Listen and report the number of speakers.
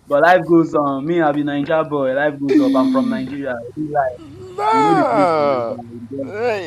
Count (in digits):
2